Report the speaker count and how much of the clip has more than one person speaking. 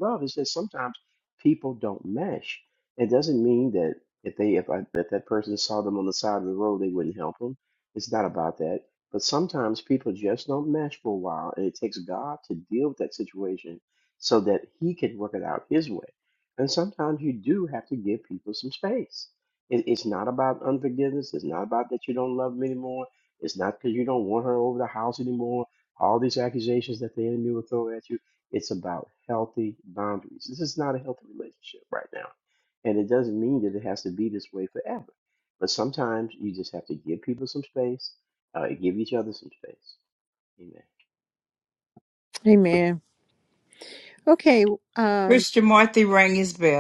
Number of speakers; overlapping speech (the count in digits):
3, under 1%